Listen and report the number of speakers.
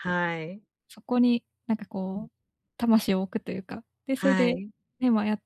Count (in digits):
2